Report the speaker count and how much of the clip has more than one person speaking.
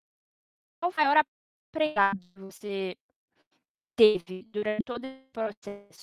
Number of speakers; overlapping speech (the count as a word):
one, no overlap